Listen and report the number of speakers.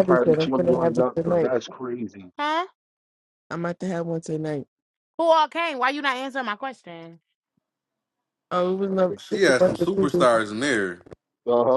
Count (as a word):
four